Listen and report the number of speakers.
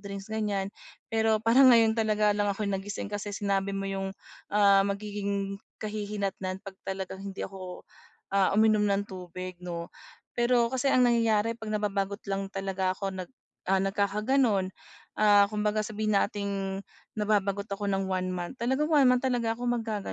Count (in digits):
1